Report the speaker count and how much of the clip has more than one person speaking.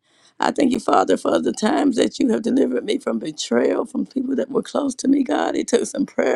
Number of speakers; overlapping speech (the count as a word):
one, no overlap